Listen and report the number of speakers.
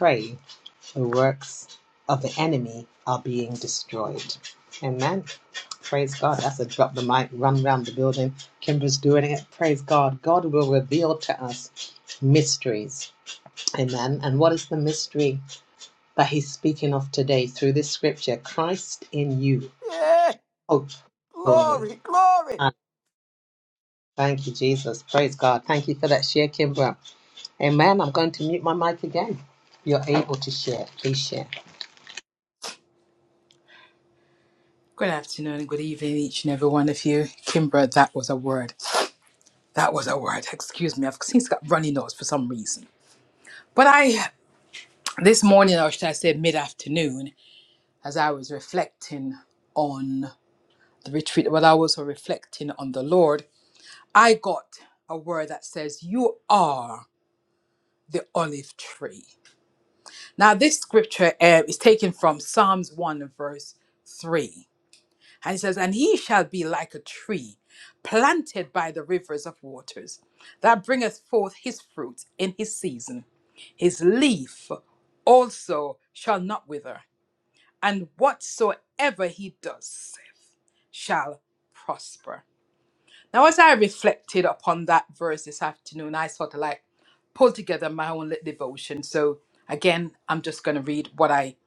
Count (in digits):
3